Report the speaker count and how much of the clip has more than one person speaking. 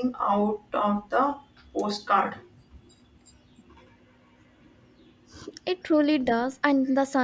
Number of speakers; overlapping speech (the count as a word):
two, no overlap